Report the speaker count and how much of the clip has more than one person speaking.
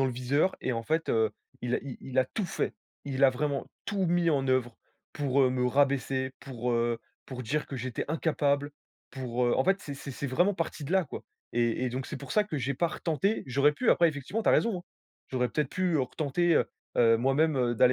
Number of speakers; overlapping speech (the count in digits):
1, no overlap